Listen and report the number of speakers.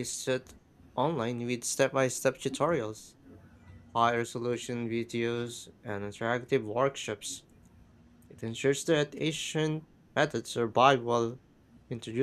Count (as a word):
one